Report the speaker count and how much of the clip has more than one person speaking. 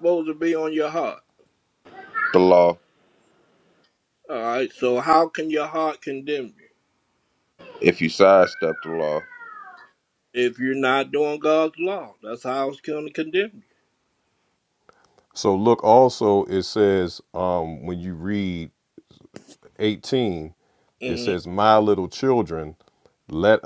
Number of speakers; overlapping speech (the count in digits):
3, about 1%